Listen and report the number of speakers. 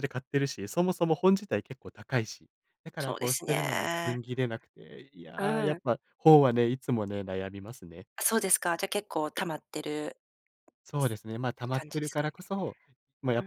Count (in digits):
2